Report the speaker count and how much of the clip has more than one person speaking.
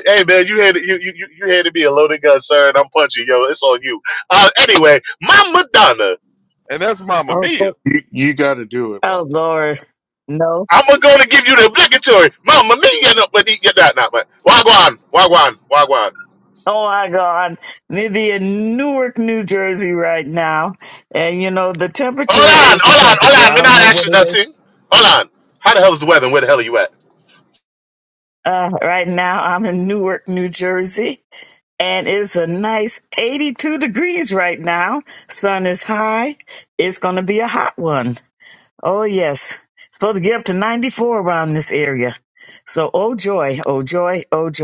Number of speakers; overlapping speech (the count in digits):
4, about 6%